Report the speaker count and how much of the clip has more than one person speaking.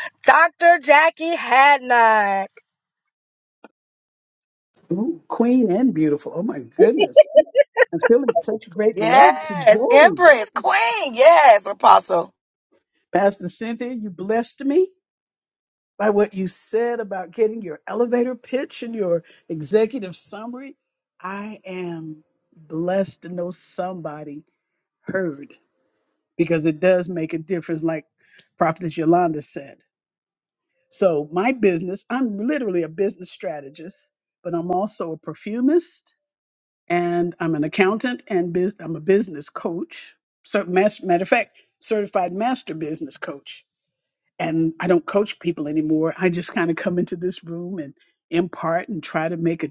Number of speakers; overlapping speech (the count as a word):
three, about 3%